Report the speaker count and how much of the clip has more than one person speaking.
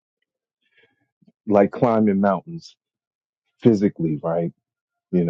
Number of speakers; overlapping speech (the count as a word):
one, no overlap